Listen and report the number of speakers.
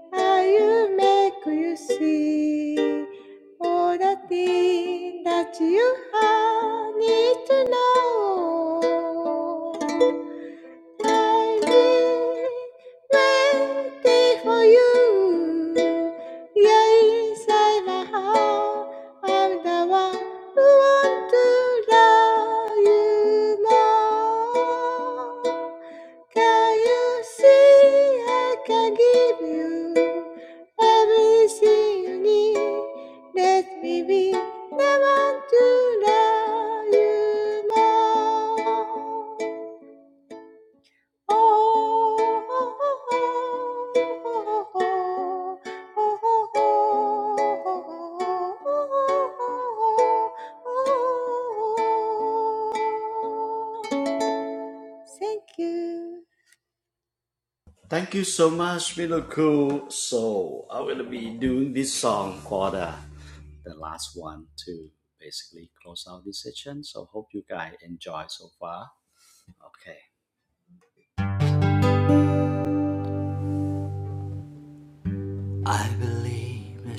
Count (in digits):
2